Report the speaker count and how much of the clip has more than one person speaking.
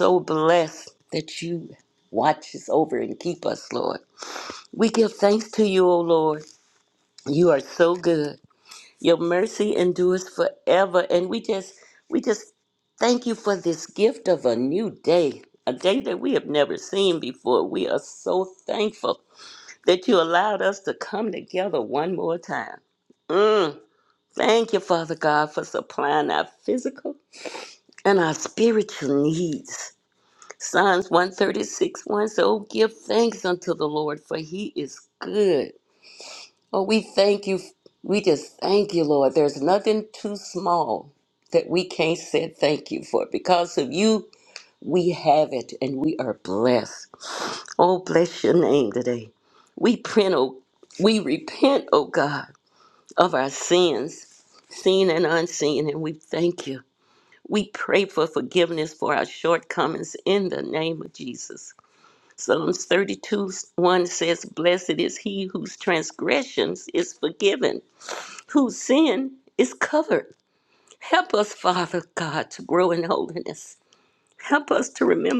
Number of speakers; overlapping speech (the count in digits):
1, no overlap